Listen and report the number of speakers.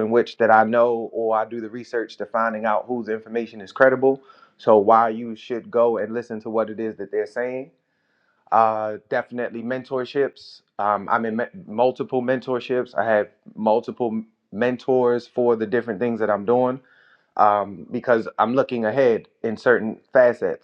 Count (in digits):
1